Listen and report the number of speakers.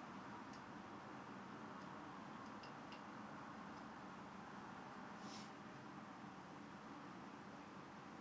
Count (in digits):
0